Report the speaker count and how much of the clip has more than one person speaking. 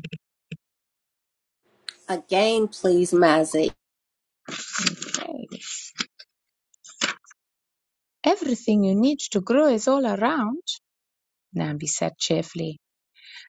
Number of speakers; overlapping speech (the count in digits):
2, no overlap